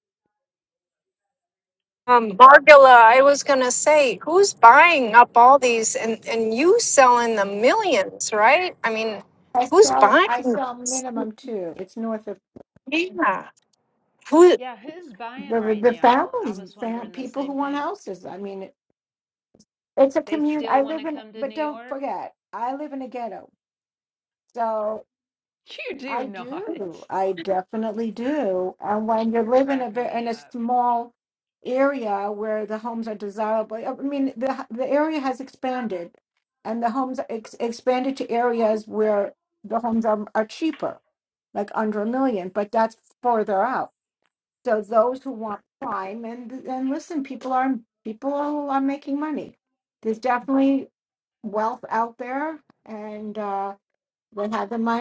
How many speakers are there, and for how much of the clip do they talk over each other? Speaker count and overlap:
three, about 13%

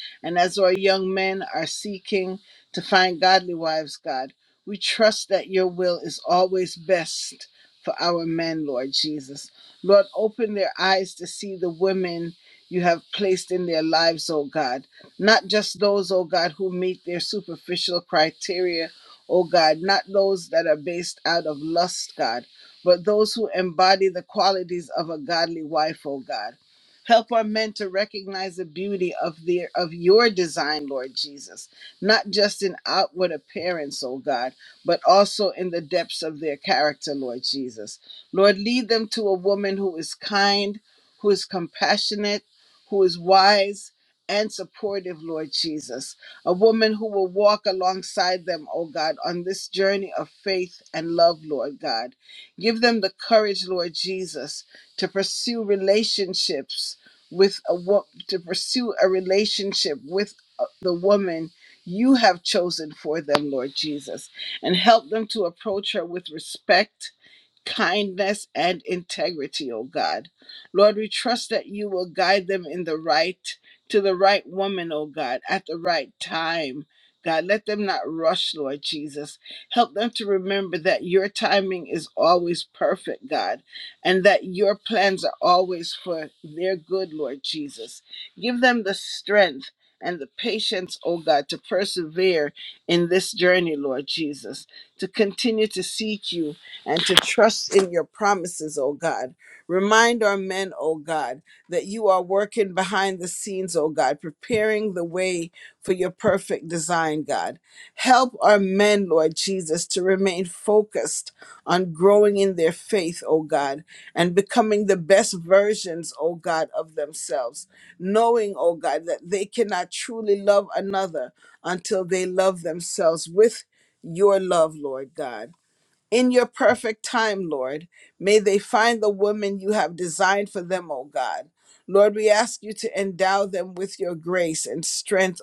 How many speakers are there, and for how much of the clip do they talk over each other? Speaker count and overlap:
one, no overlap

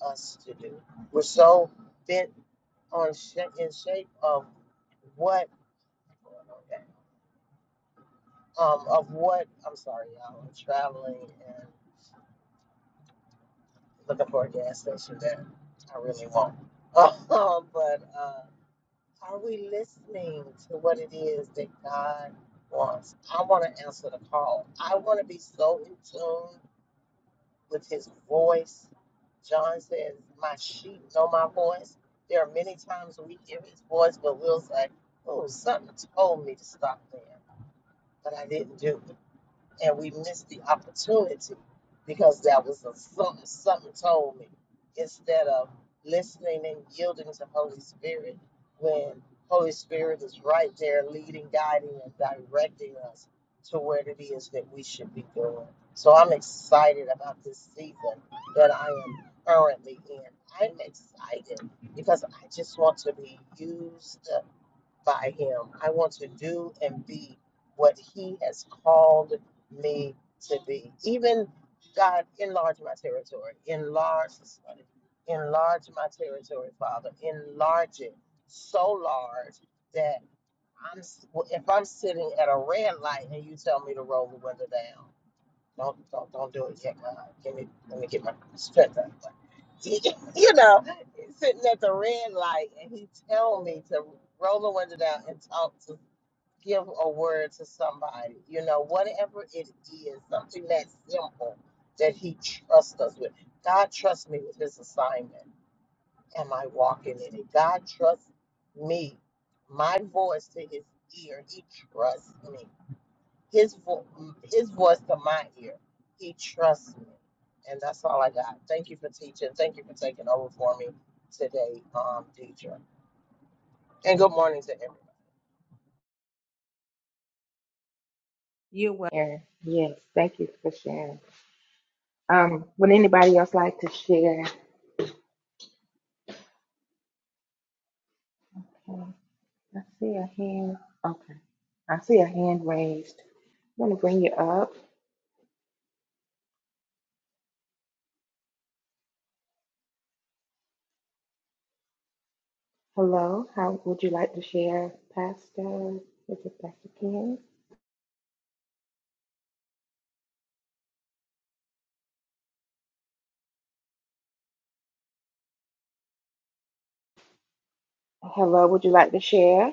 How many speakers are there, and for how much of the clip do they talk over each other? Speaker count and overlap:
two, no overlap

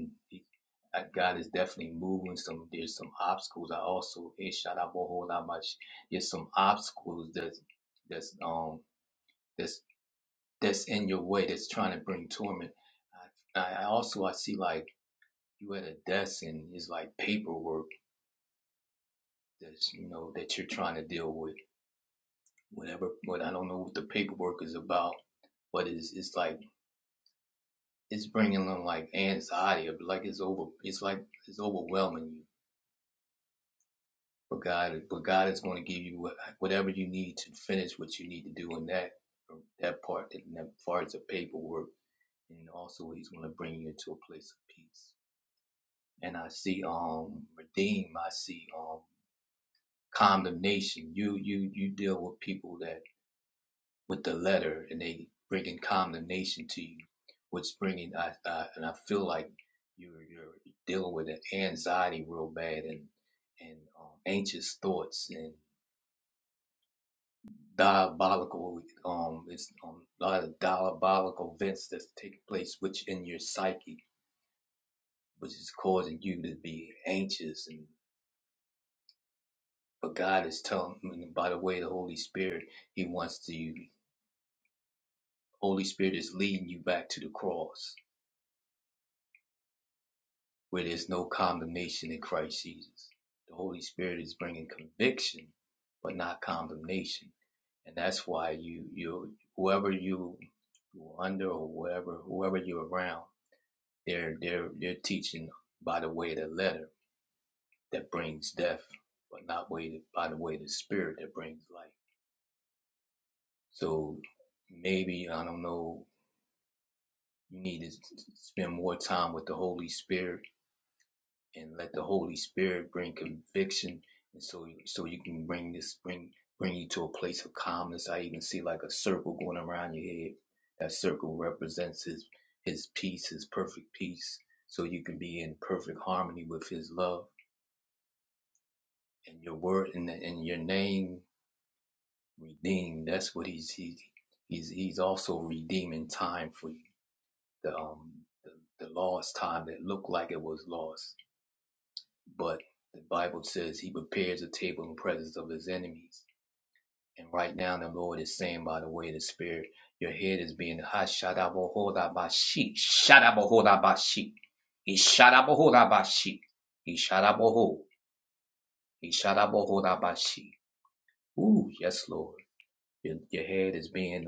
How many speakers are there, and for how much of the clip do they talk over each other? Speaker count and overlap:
one, no overlap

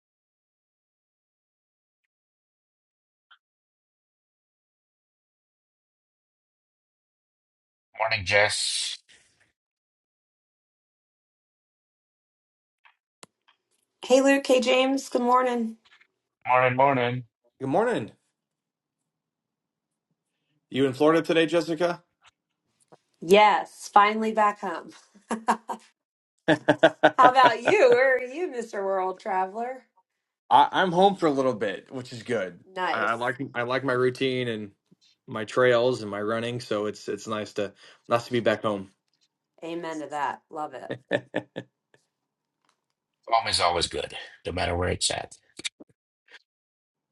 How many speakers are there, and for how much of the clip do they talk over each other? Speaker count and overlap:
three, under 1%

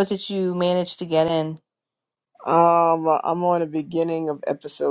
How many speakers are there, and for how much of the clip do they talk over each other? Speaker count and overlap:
two, no overlap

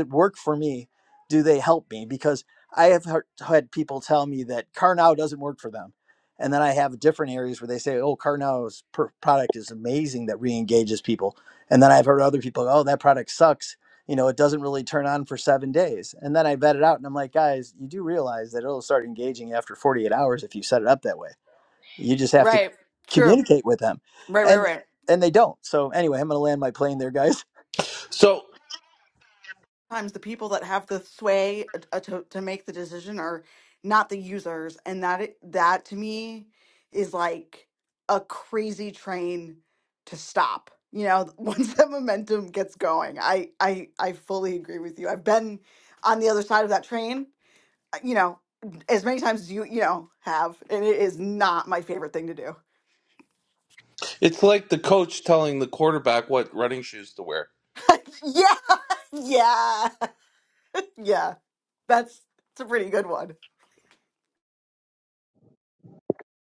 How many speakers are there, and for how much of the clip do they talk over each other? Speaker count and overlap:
three, about 1%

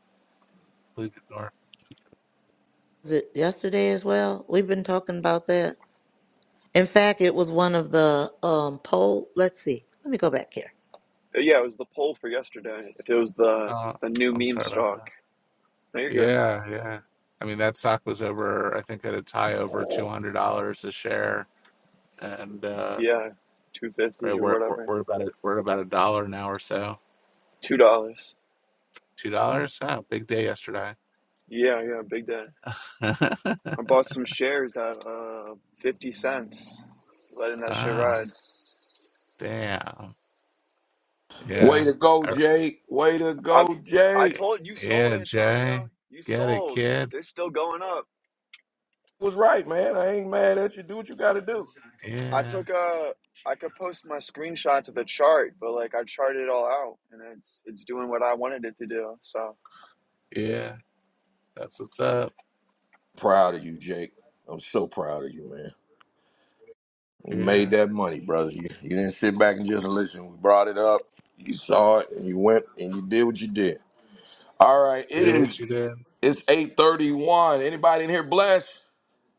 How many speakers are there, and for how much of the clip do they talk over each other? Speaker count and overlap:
four, about 8%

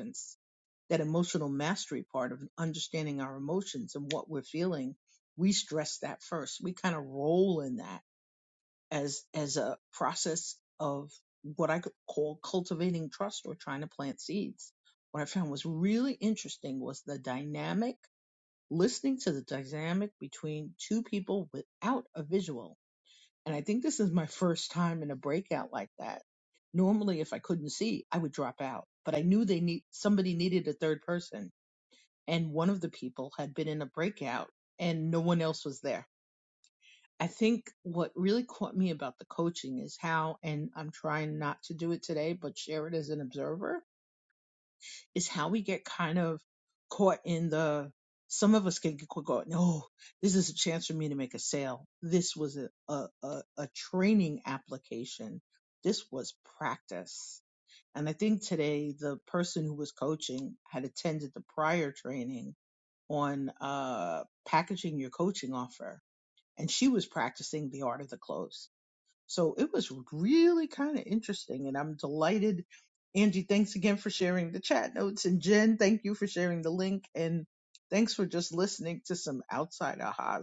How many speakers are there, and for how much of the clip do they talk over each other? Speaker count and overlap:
one, no overlap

